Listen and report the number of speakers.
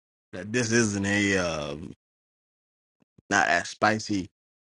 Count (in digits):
1